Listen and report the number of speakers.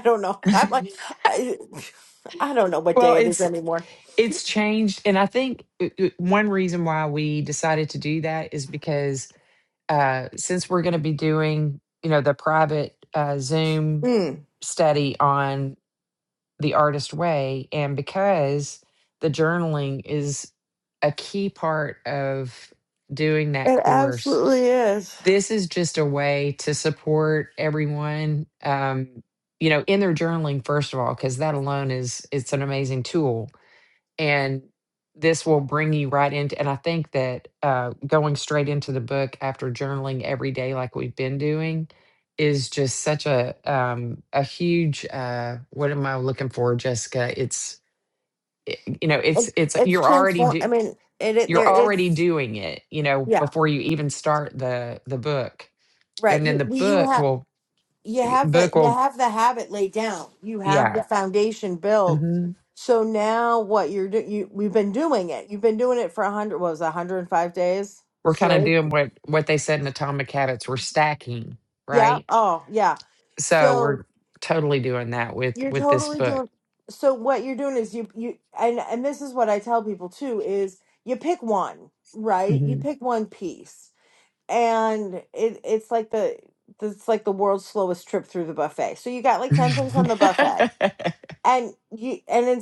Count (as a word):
two